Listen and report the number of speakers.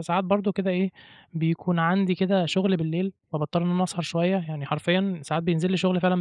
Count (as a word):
one